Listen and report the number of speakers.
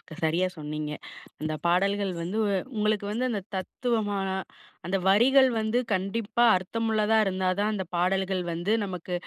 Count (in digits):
1